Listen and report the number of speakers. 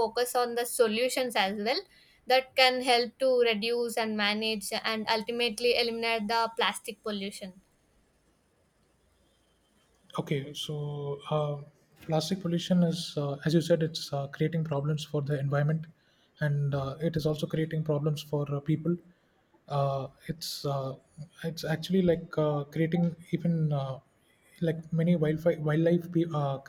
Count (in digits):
2